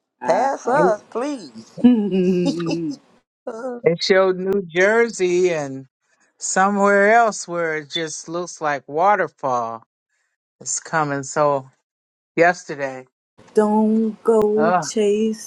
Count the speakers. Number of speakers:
3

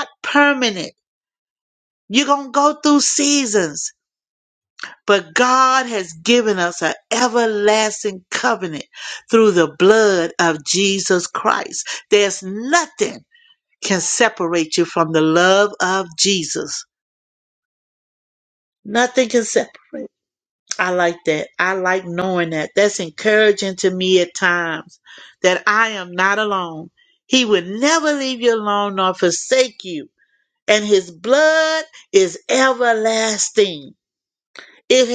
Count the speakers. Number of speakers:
1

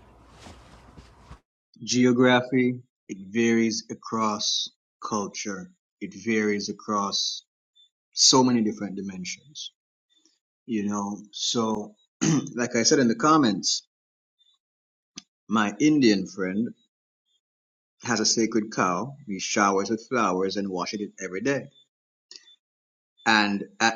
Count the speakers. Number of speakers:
1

